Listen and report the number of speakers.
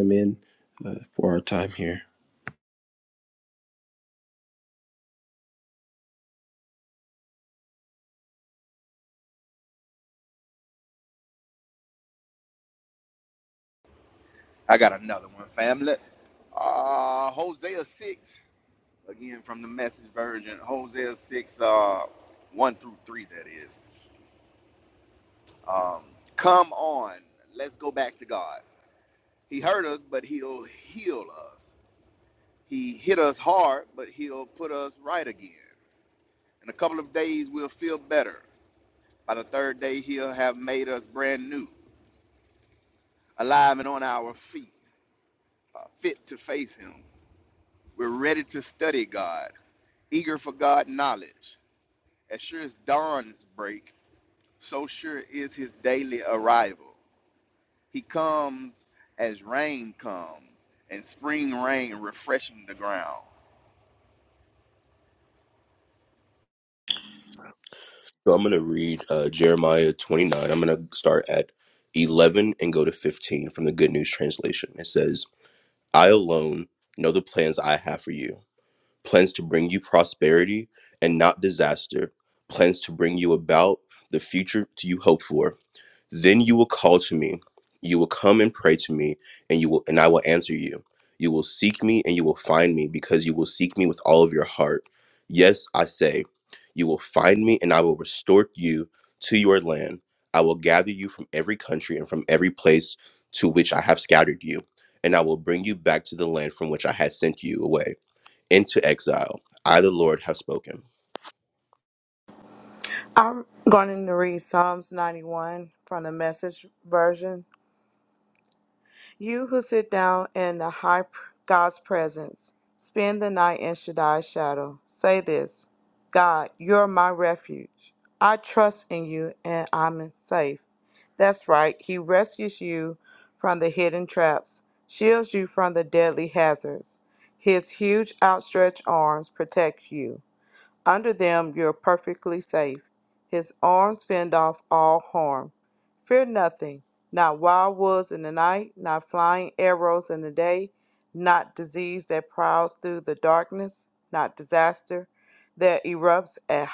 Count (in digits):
4